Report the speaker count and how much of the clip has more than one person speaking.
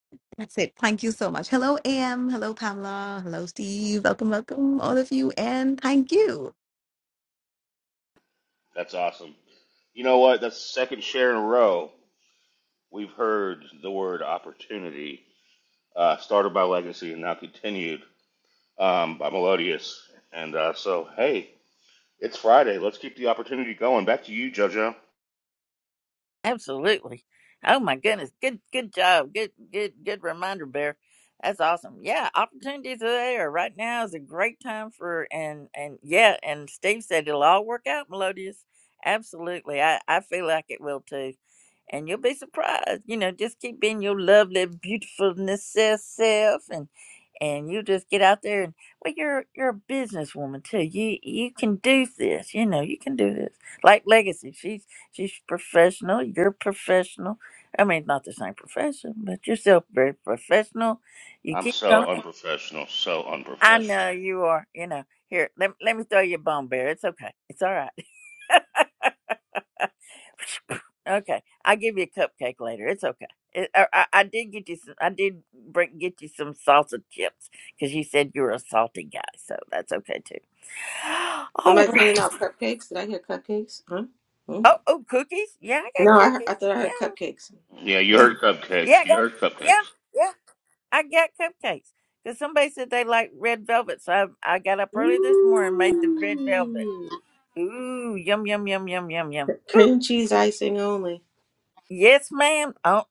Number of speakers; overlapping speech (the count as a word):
four, about 4%